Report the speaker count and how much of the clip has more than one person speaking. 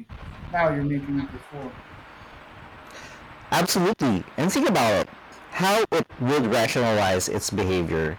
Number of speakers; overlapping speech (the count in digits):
2, no overlap